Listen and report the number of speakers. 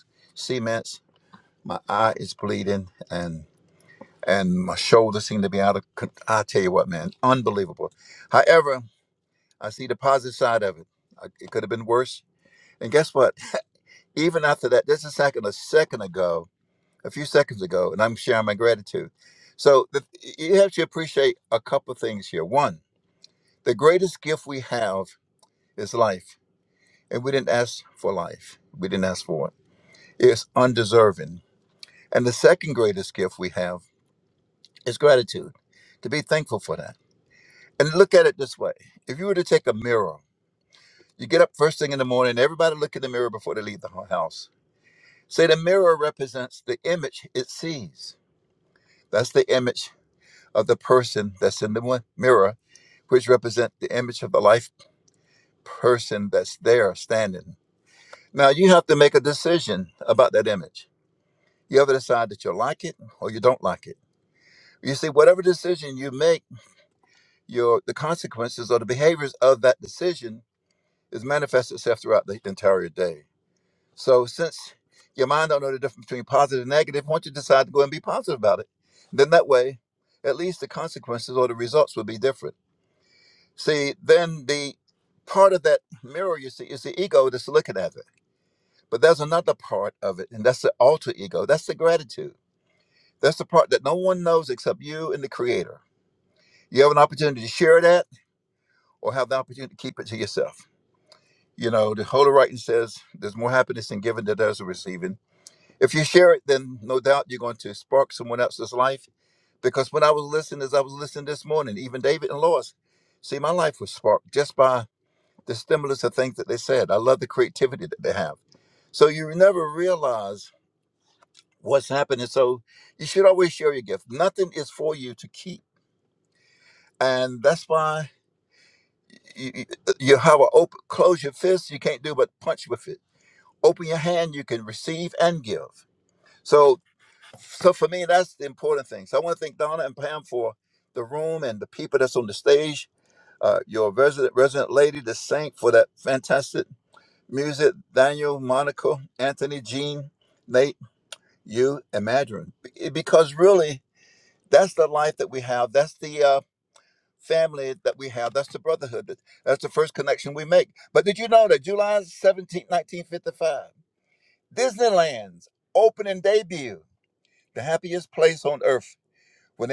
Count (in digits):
1